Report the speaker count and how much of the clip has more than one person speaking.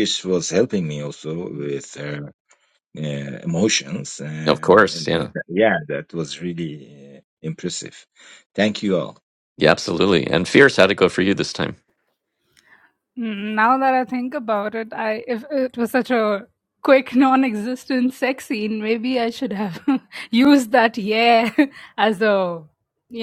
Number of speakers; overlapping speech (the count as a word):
three, about 4%